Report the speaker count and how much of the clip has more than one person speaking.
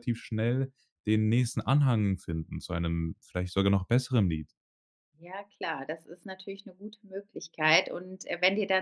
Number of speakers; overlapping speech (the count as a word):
two, no overlap